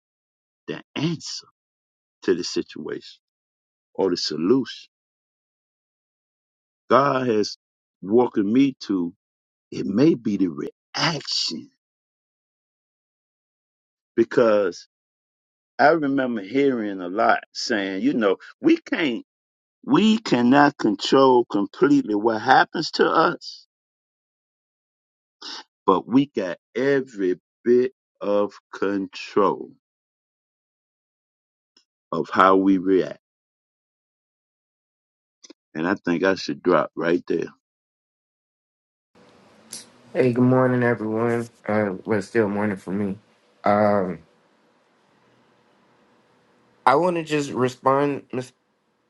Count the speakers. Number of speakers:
two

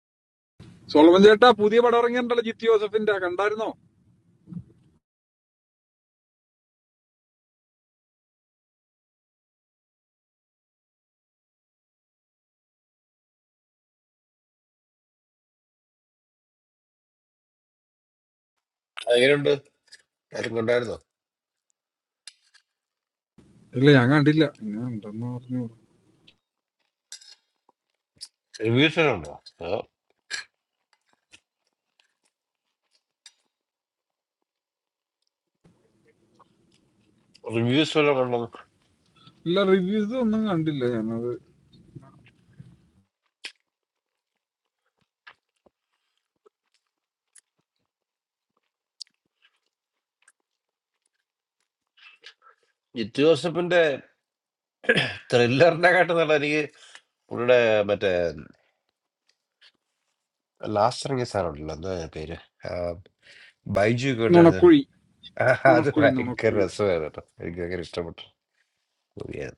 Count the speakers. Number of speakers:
two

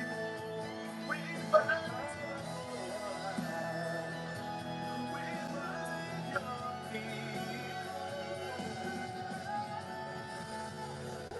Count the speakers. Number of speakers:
zero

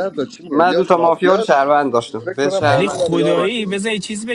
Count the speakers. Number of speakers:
three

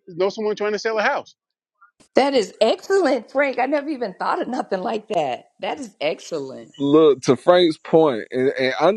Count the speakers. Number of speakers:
three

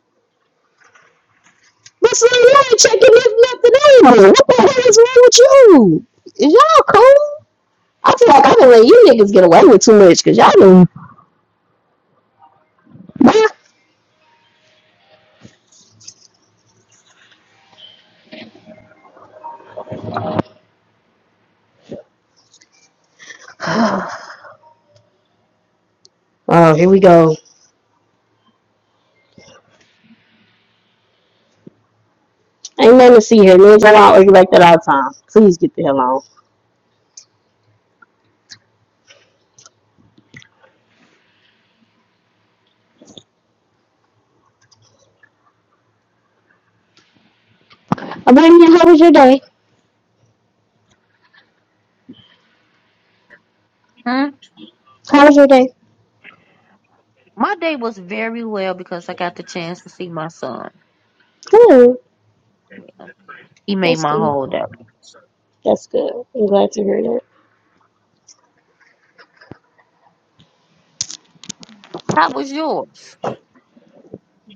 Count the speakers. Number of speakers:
two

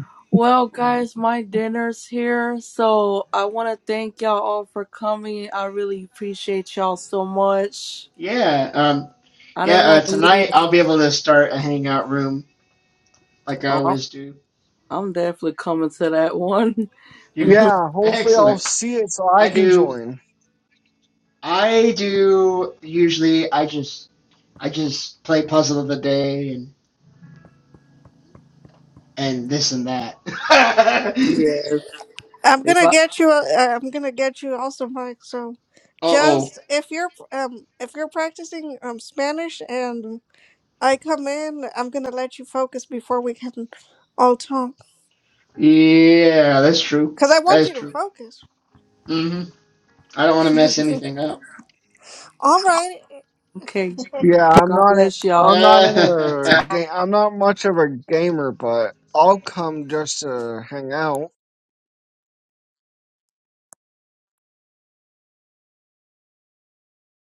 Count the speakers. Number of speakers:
four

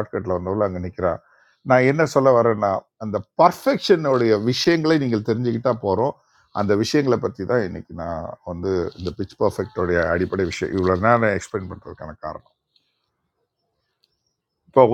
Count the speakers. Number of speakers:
one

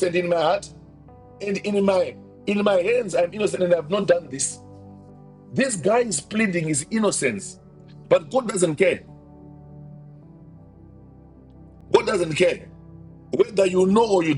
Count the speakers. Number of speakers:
one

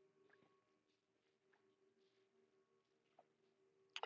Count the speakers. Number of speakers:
zero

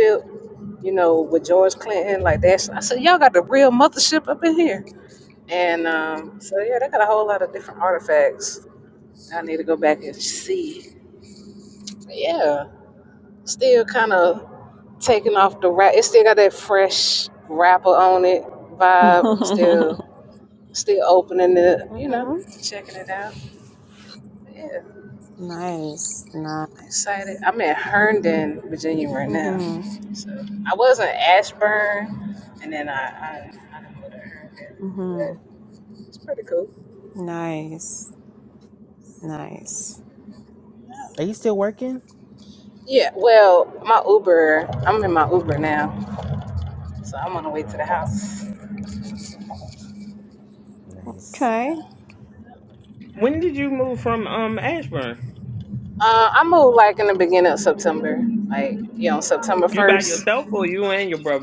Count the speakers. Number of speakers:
four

